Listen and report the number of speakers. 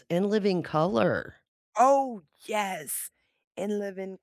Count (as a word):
two